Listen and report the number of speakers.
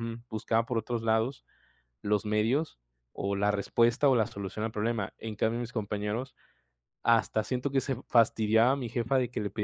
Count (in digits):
1